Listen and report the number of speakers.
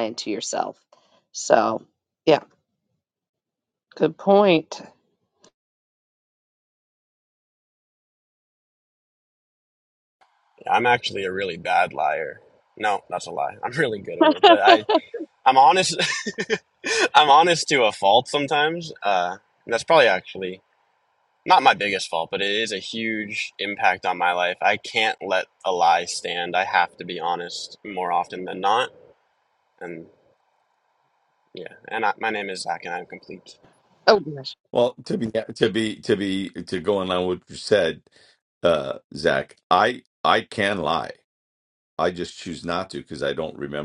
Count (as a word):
three